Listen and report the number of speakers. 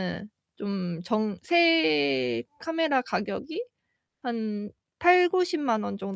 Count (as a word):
one